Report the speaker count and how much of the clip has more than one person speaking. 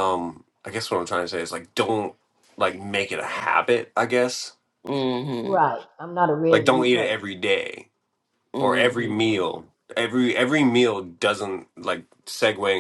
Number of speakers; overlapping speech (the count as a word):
three, about 11%